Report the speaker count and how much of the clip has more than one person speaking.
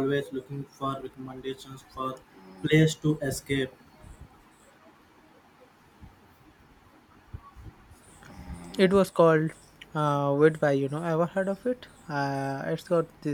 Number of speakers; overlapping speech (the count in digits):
2, no overlap